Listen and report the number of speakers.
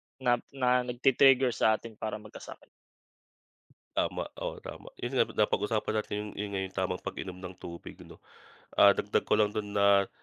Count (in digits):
2